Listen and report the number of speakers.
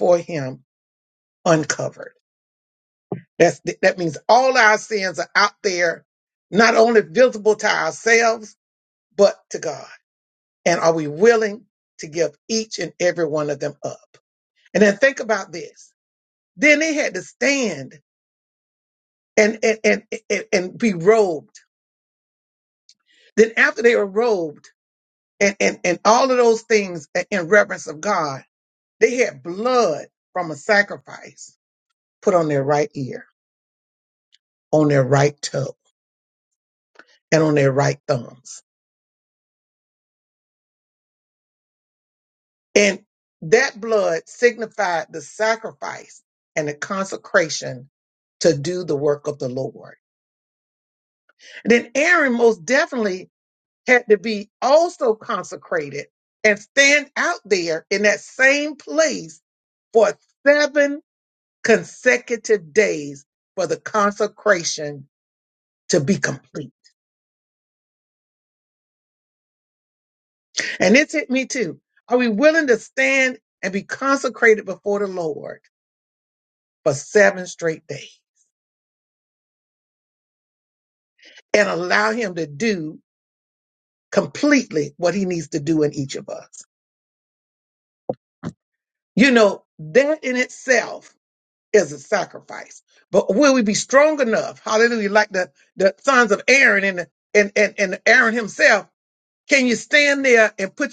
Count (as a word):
one